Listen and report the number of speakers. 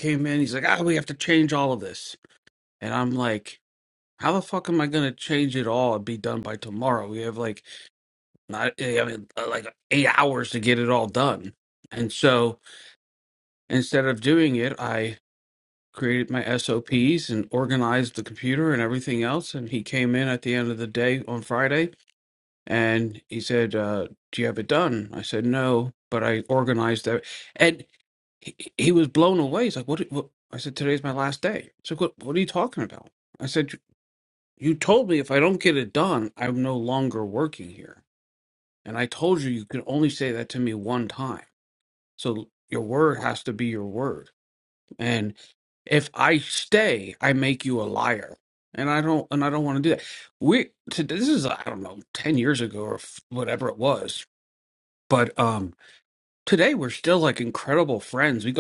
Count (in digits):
1